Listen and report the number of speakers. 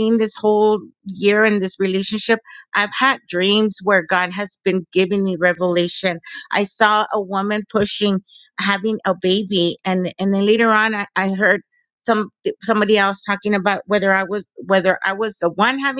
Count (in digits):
1